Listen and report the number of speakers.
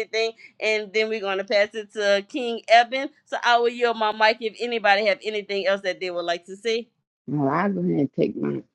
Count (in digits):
2